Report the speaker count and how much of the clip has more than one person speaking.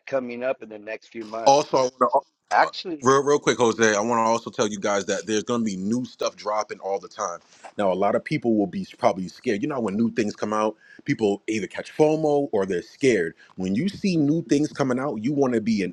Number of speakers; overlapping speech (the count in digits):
2, under 1%